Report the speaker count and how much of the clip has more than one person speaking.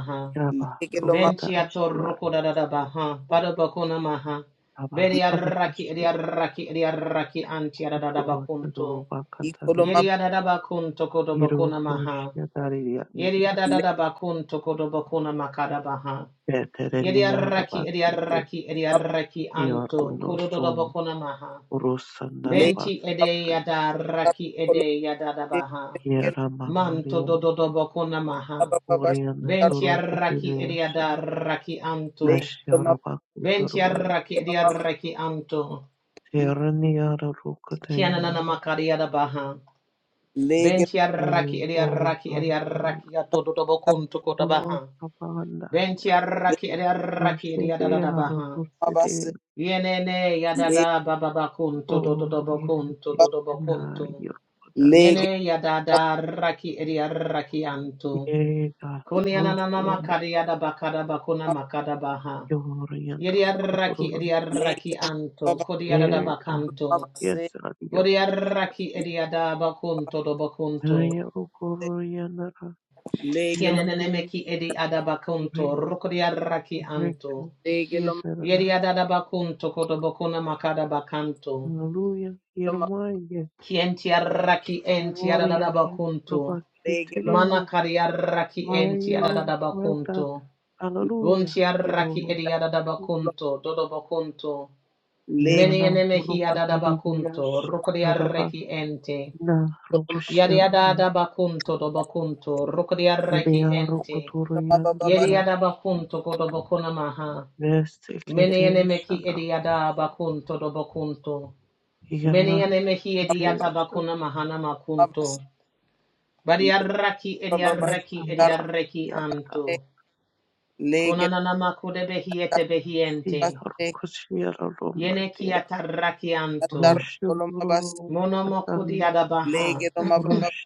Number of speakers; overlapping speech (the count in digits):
3, about 33%